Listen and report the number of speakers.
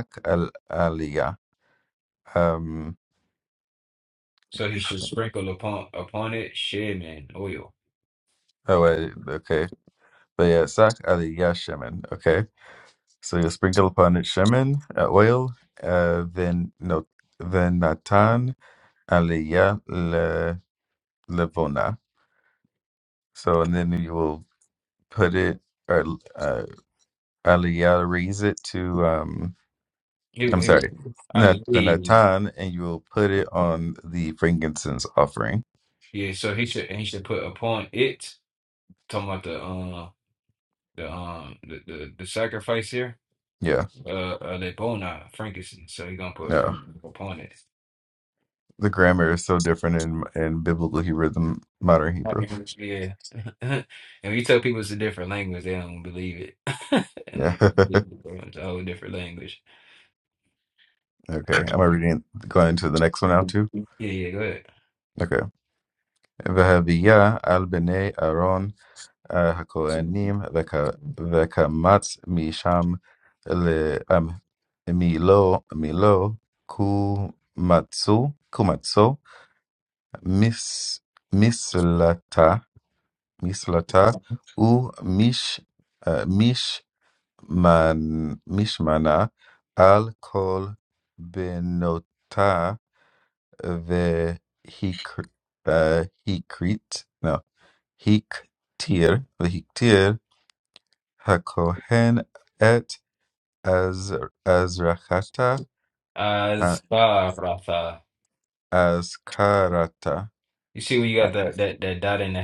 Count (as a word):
two